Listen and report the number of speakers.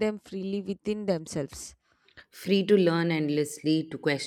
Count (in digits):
2